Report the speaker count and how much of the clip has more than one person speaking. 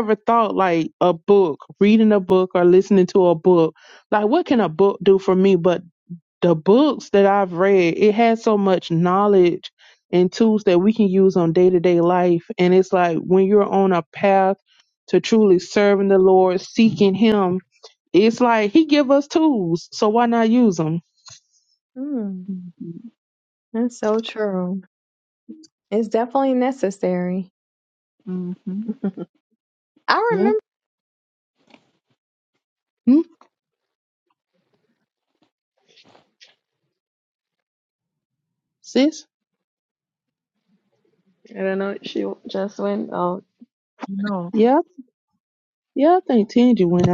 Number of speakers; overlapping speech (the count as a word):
four, under 1%